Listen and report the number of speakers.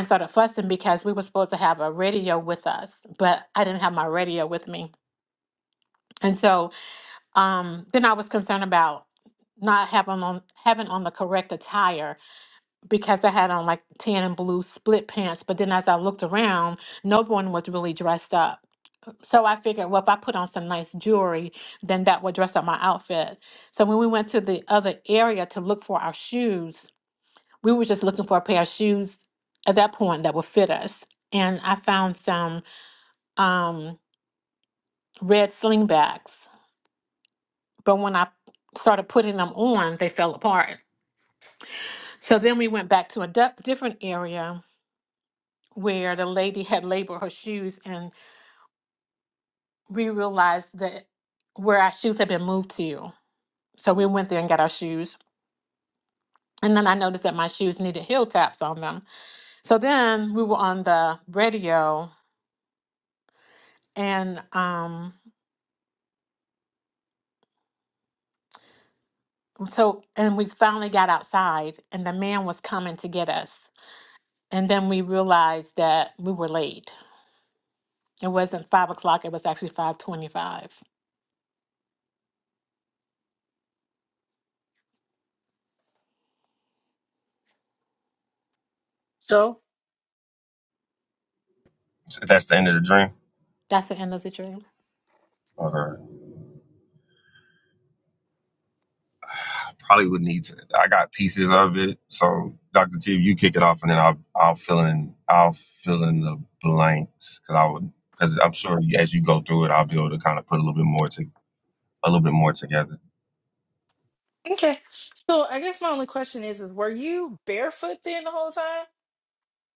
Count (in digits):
3